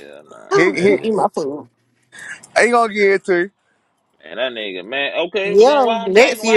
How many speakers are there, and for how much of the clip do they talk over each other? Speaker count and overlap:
three, about 26%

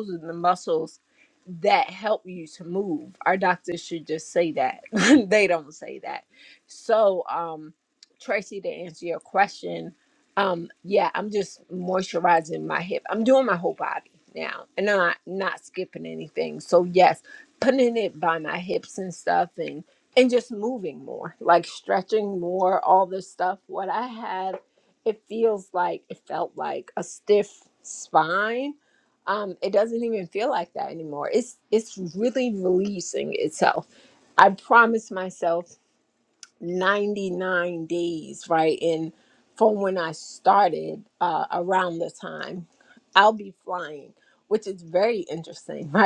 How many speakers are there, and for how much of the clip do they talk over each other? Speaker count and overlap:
one, no overlap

